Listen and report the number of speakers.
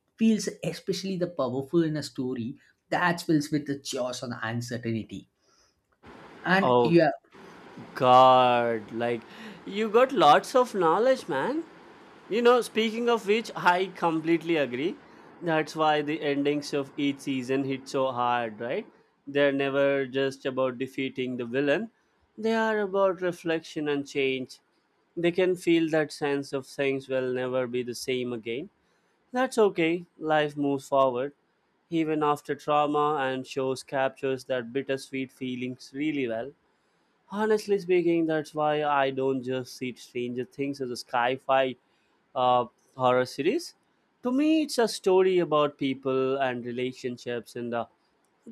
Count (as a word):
two